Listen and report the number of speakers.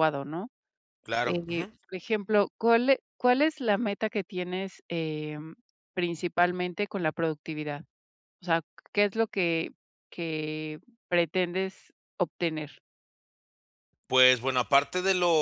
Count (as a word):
two